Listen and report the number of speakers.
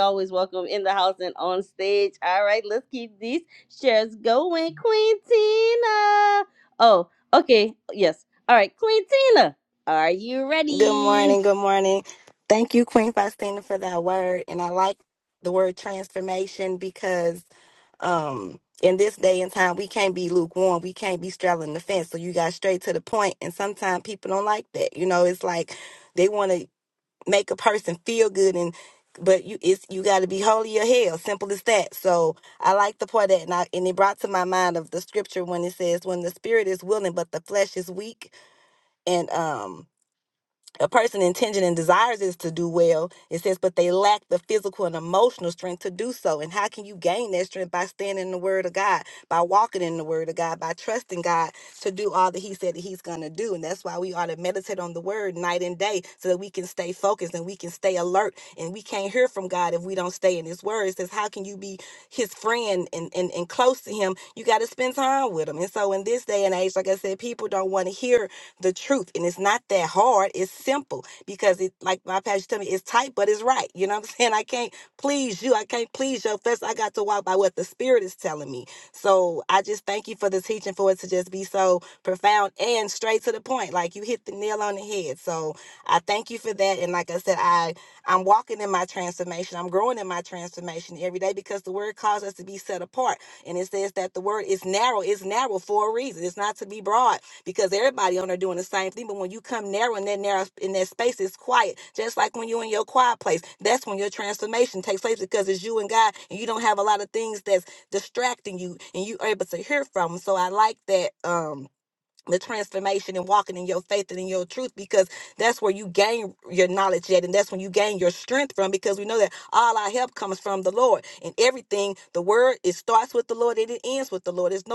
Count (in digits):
2